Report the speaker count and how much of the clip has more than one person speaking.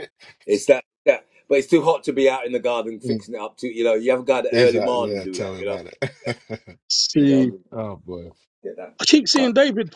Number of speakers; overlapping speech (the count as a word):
three, about 22%